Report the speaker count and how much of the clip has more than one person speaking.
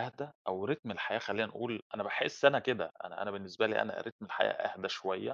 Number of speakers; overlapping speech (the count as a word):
one, no overlap